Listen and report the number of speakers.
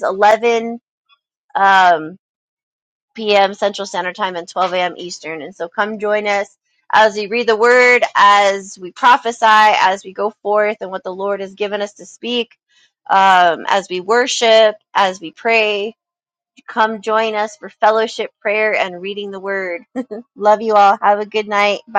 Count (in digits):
1